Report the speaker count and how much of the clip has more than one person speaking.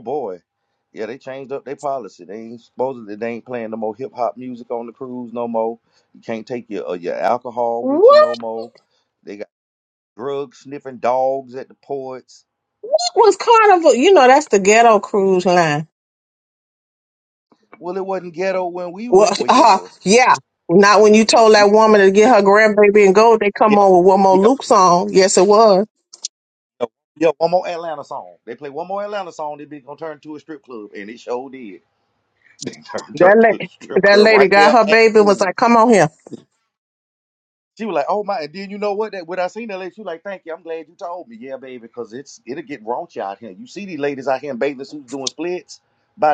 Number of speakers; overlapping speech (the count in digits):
2, about 9%